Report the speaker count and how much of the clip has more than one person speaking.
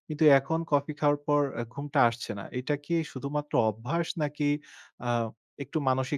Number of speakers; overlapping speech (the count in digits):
1, no overlap